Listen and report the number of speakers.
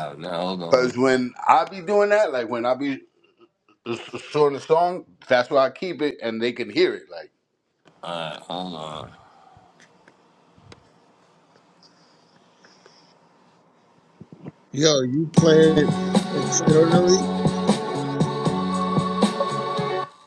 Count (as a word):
three